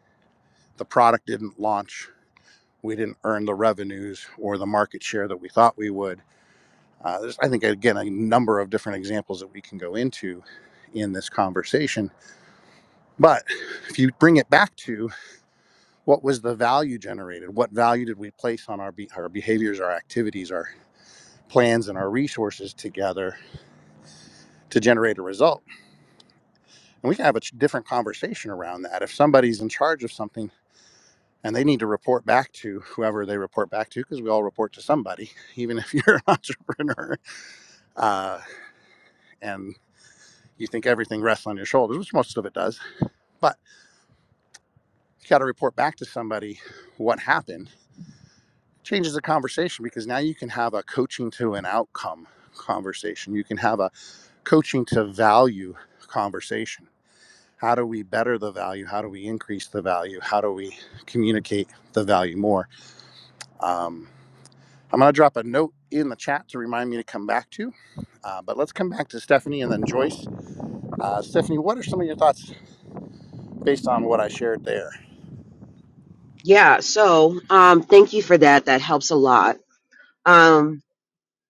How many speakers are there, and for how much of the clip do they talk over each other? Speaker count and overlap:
two, no overlap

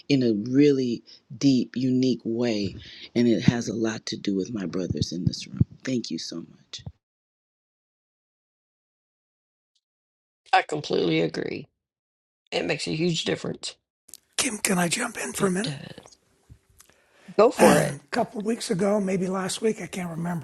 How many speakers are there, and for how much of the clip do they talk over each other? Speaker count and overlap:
three, about 2%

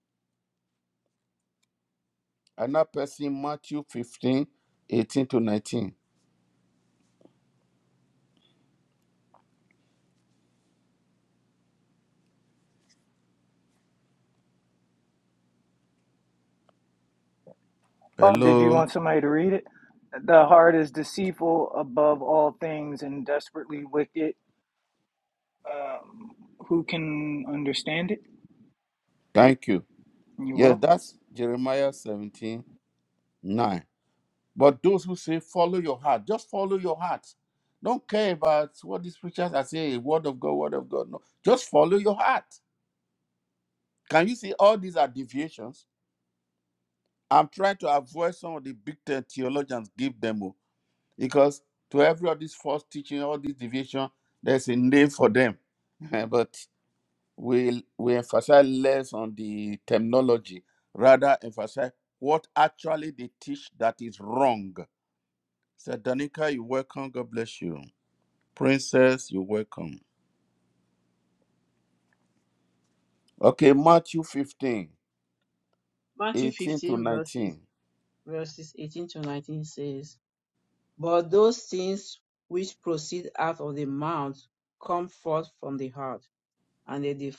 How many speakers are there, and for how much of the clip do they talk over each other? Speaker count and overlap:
three, about 2%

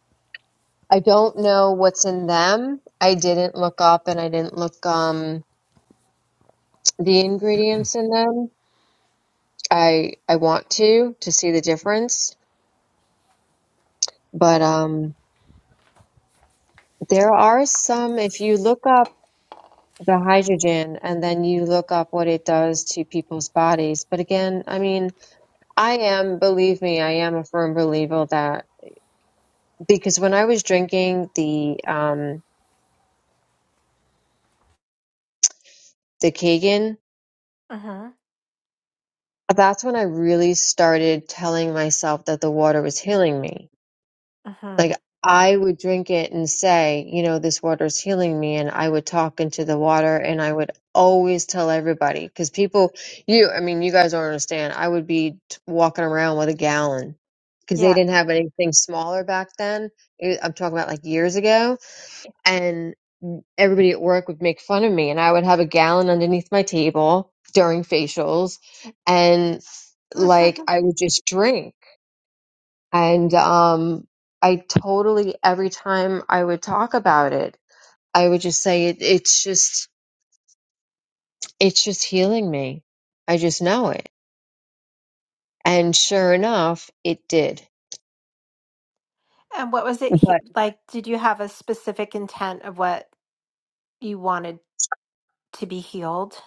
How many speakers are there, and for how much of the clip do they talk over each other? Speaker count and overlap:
two, about 1%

